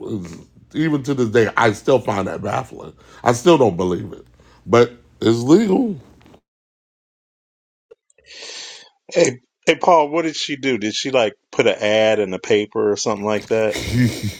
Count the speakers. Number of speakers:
two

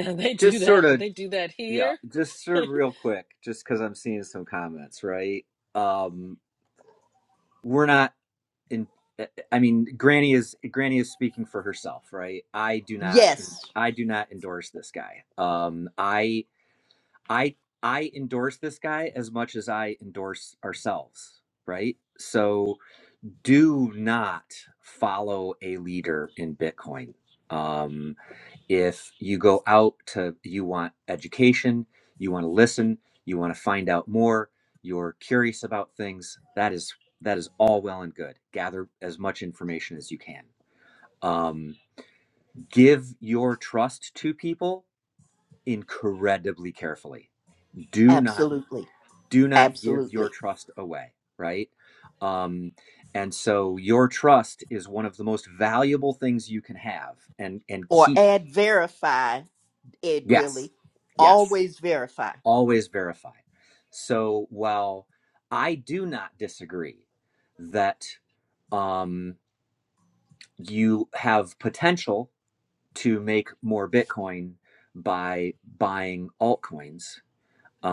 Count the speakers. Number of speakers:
three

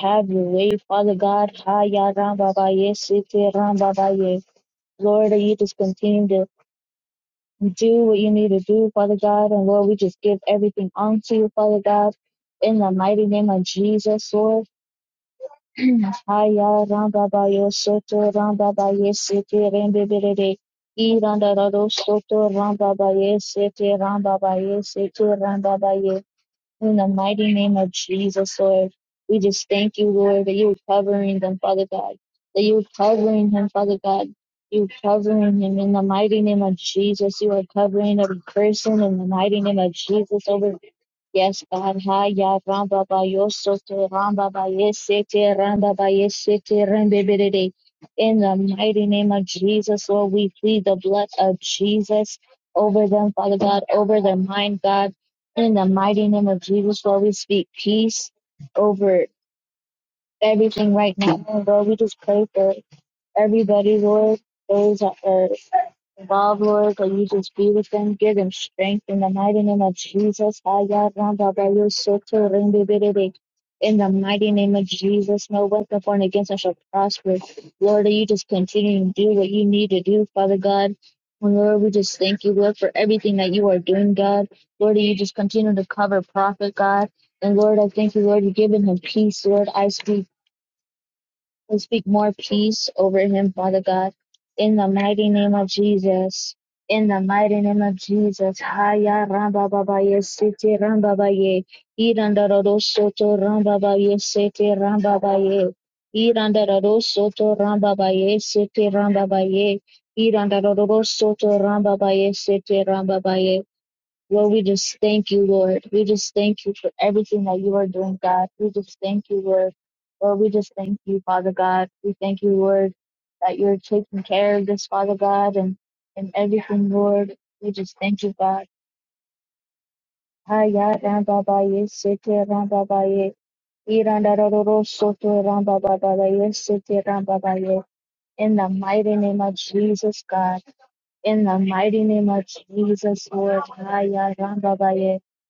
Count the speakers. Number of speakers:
one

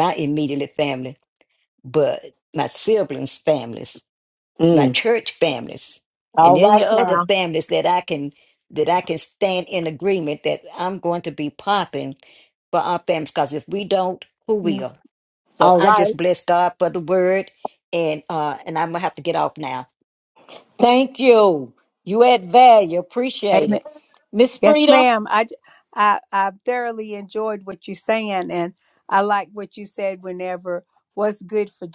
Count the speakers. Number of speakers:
three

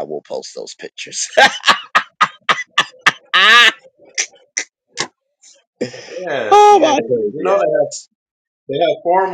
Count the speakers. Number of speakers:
two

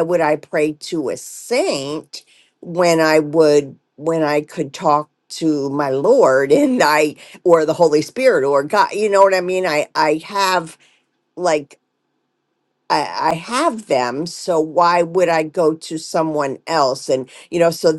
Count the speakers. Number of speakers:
one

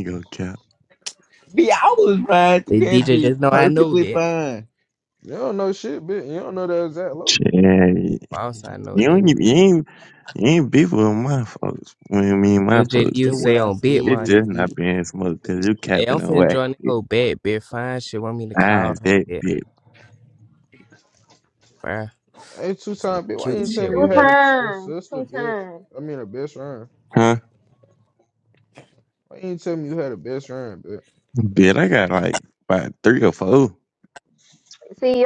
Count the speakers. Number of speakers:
five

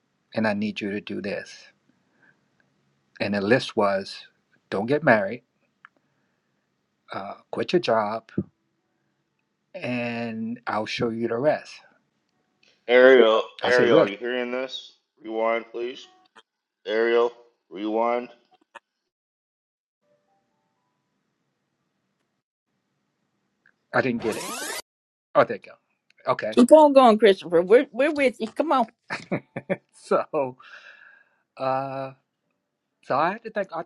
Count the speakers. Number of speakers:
three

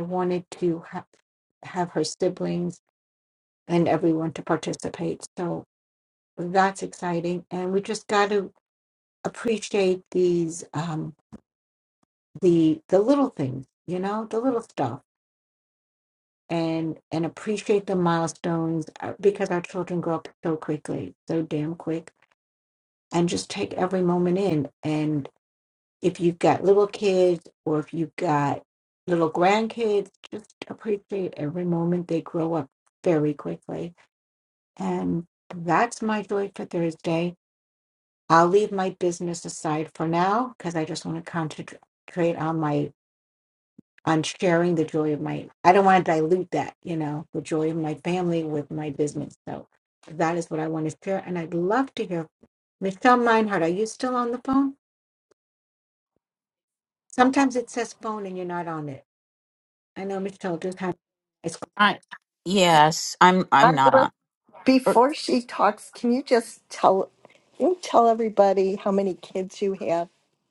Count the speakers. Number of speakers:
three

